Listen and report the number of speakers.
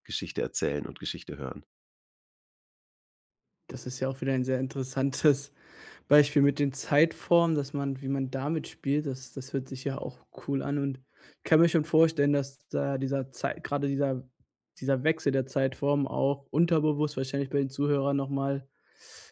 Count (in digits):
2